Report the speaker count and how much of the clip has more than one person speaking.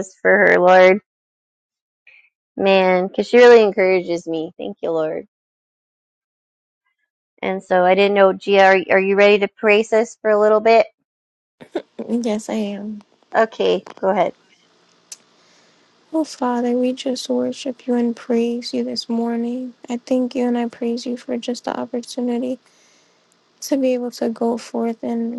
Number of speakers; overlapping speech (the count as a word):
two, no overlap